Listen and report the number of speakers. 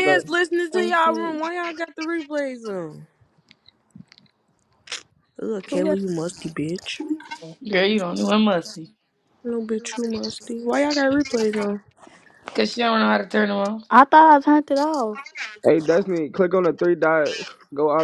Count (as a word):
four